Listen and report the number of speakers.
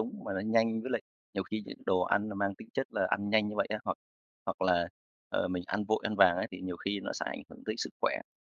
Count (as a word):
one